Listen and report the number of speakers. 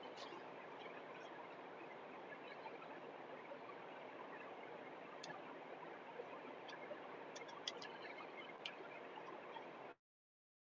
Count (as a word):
zero